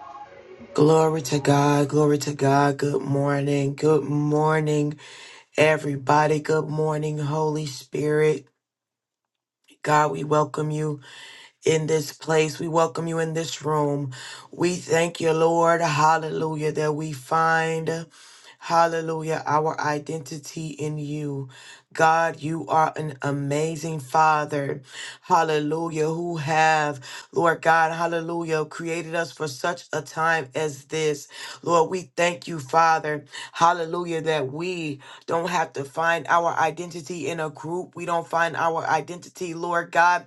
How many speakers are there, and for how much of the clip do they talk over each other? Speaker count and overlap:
1, no overlap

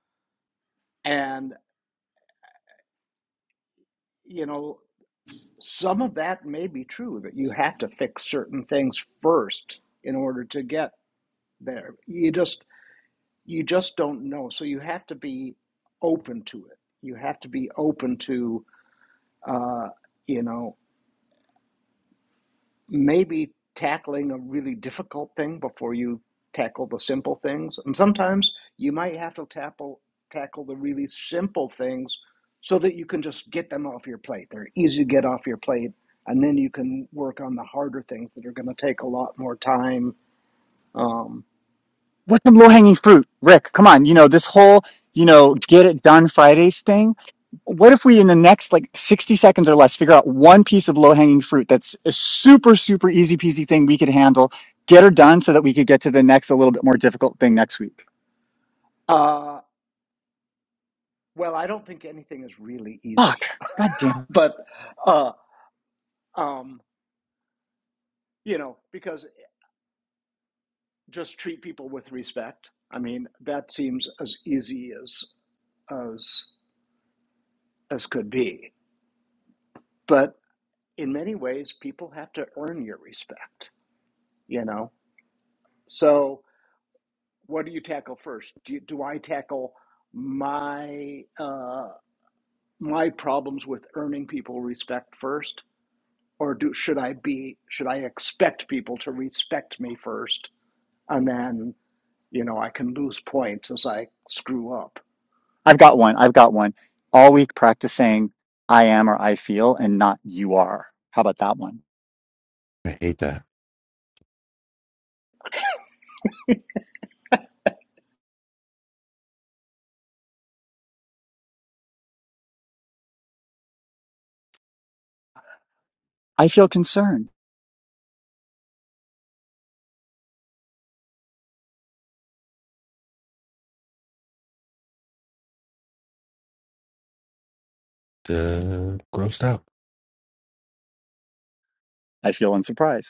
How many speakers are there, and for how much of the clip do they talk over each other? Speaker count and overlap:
3, under 1%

